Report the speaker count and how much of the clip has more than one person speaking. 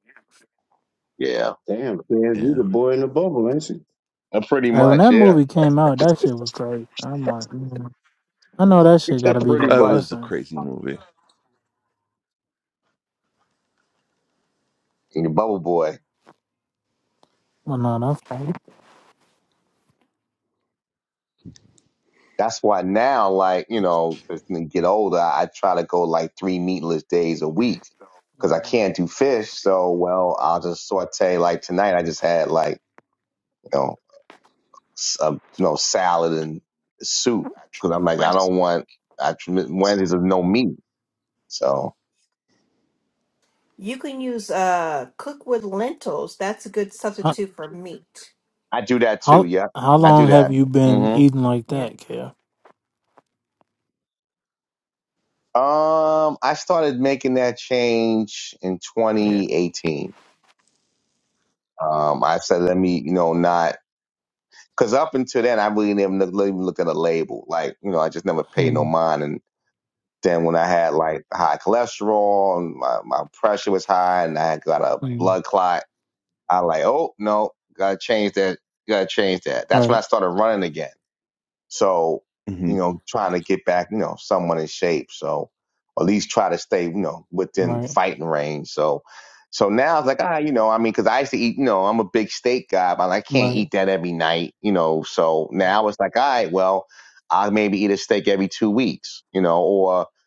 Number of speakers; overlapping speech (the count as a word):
five, about 5%